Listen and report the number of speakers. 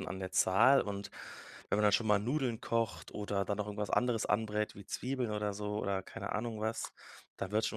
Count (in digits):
1